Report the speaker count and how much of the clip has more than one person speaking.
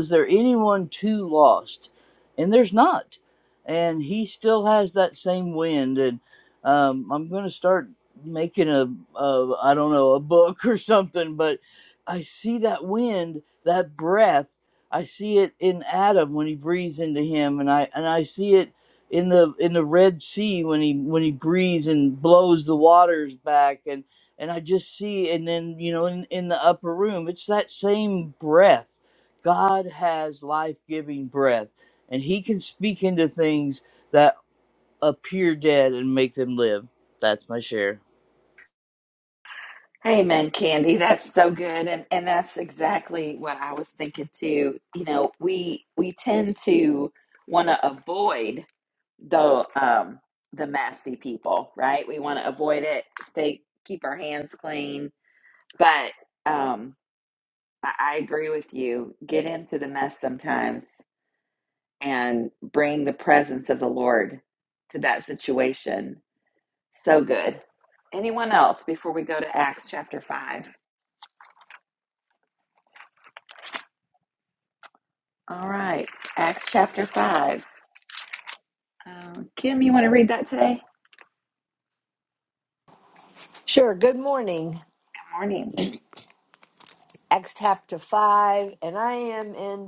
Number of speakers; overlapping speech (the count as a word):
three, no overlap